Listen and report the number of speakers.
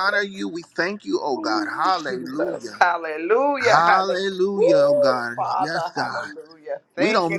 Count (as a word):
two